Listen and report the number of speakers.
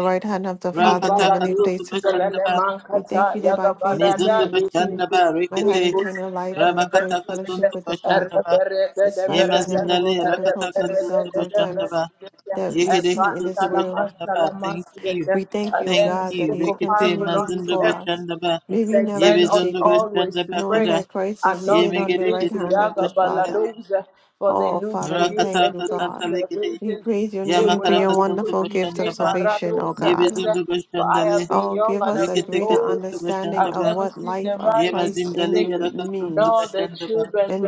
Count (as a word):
three